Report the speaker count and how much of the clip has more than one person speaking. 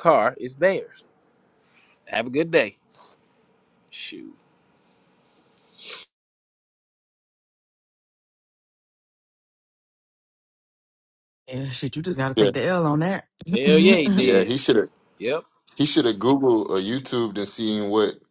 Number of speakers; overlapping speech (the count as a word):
three, about 4%